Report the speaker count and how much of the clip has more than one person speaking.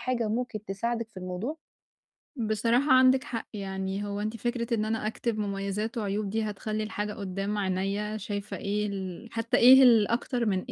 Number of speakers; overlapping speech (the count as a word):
two, no overlap